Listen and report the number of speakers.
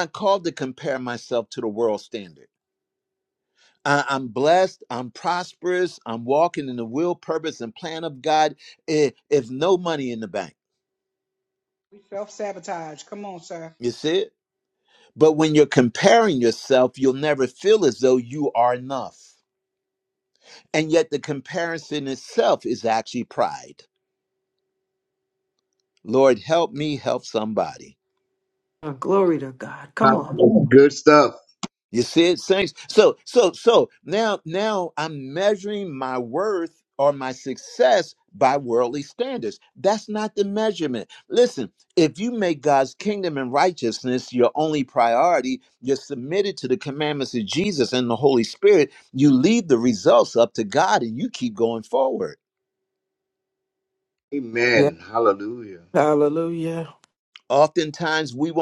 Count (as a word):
five